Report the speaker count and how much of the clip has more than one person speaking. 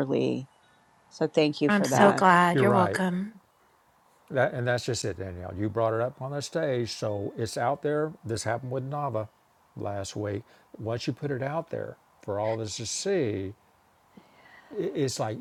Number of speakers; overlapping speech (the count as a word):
three, about 7%